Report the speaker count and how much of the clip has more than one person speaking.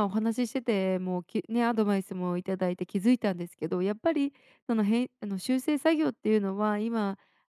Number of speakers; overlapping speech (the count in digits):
1, no overlap